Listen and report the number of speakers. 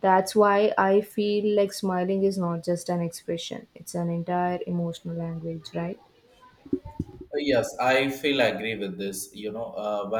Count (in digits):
2